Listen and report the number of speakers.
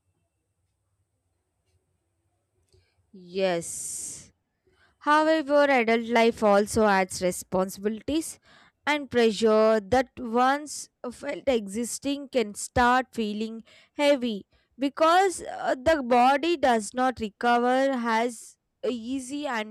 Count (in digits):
1